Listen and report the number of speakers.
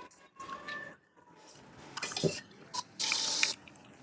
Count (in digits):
0